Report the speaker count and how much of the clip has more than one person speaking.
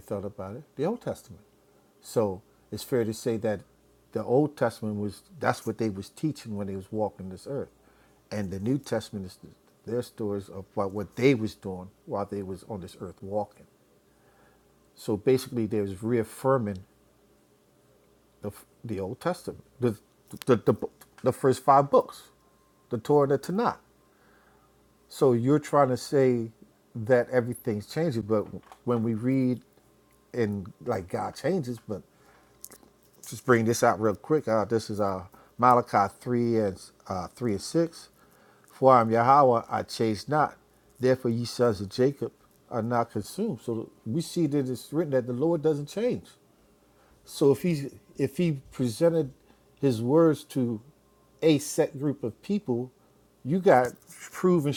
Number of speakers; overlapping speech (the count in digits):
1, no overlap